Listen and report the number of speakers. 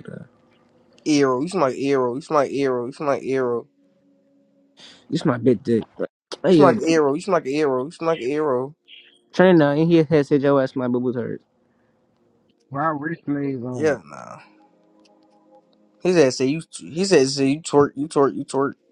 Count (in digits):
3